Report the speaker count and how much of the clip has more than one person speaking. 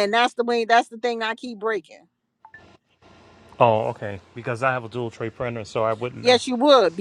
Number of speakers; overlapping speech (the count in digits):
2, about 2%